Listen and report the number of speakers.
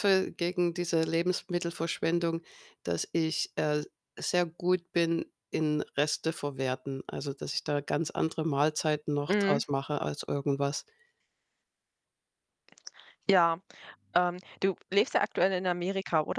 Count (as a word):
two